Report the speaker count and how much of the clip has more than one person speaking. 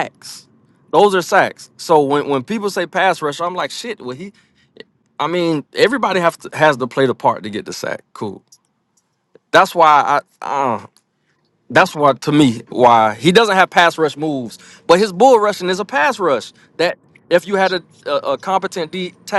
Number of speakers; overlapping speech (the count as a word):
one, no overlap